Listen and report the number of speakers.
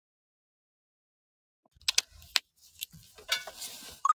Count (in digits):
0